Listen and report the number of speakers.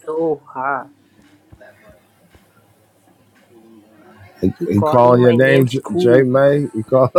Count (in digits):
2